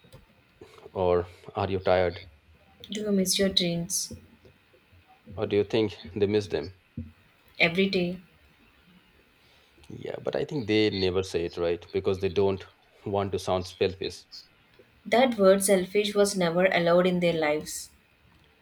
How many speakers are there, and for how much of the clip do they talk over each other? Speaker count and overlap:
2, no overlap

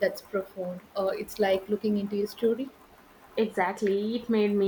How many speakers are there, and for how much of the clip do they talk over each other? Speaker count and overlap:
2, no overlap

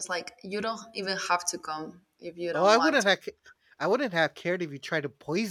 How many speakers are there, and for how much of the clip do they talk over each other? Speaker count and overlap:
2, about 11%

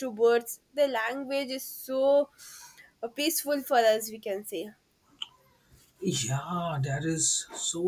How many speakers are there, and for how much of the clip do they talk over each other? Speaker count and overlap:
2, no overlap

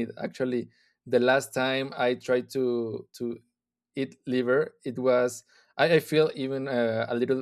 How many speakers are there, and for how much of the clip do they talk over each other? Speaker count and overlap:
1, no overlap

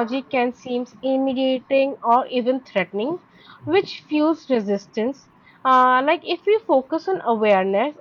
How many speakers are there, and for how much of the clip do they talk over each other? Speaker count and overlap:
1, no overlap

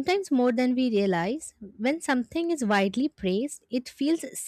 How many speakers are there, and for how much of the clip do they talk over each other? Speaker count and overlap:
1, no overlap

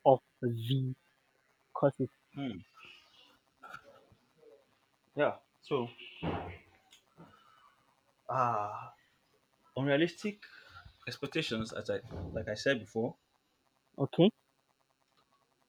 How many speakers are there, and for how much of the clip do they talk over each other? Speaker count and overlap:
2, no overlap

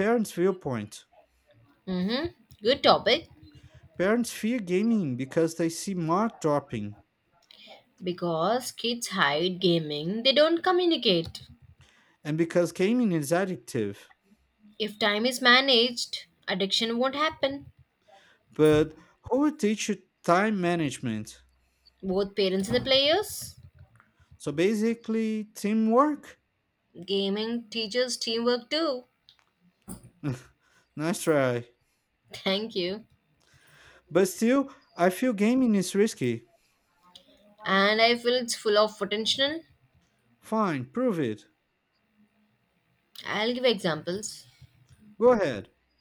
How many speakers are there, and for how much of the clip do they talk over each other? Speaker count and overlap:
2, no overlap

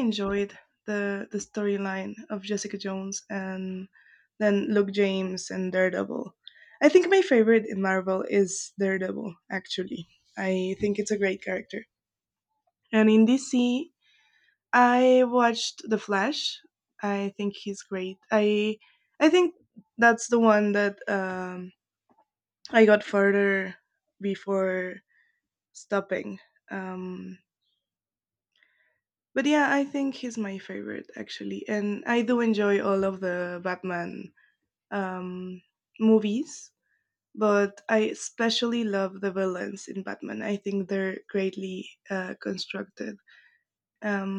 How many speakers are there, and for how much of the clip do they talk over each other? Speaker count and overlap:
1, no overlap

